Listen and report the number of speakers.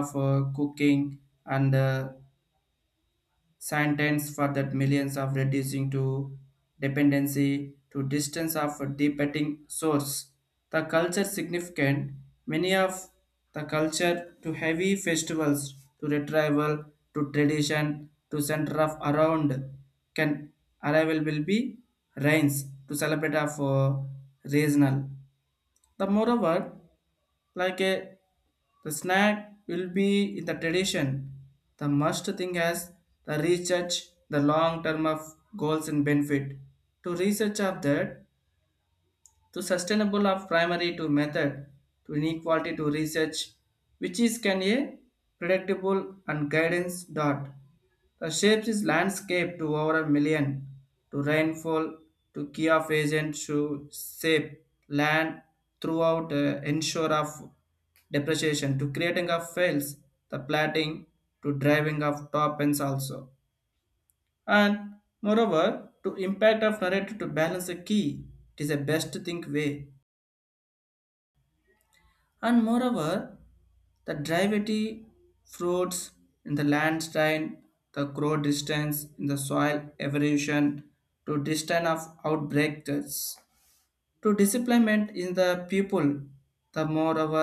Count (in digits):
1